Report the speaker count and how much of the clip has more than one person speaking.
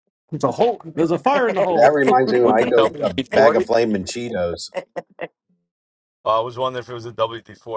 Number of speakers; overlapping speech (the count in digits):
3, about 19%